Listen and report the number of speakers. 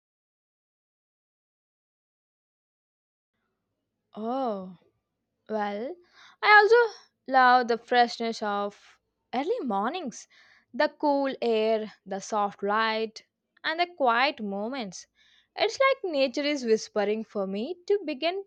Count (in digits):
1